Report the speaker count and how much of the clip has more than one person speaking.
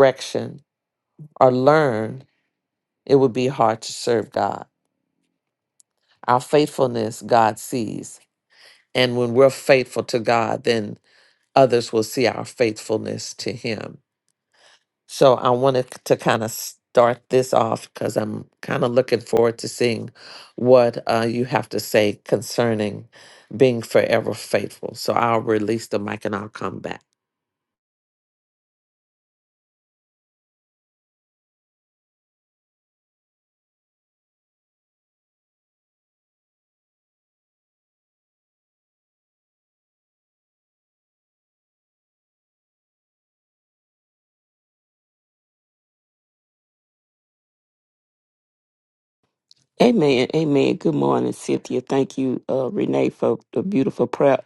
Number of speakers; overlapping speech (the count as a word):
two, no overlap